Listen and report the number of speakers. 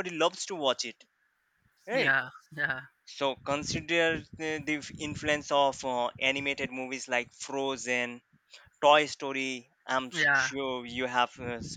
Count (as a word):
two